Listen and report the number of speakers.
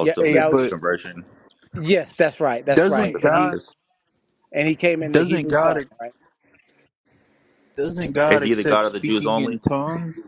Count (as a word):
three